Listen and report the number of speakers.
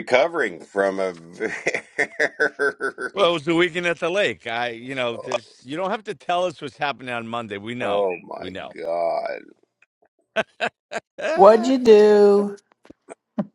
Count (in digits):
3